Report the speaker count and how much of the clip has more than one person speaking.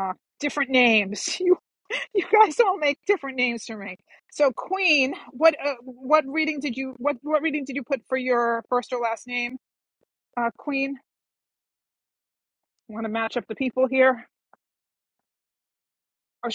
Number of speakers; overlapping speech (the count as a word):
one, no overlap